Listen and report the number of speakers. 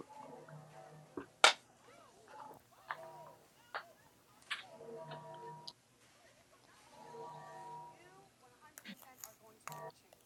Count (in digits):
0